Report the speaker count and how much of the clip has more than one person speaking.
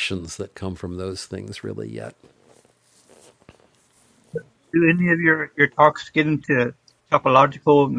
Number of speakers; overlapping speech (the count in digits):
2, no overlap